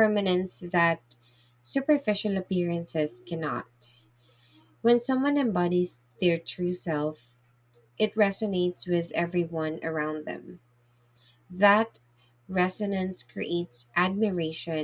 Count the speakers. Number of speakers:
one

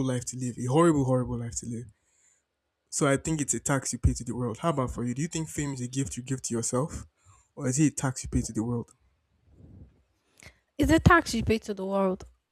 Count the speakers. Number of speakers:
two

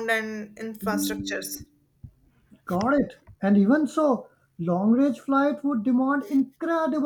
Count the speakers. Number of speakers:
two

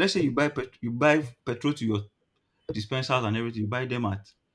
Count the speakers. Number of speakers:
one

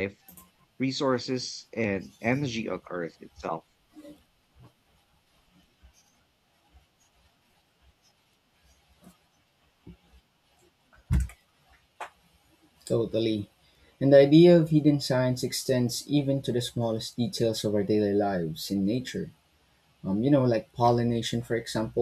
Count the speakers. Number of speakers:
two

